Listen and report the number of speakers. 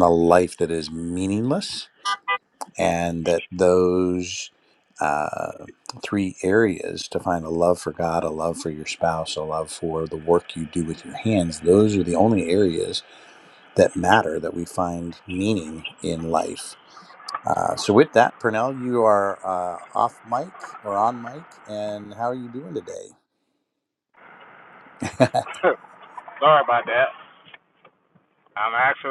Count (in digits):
2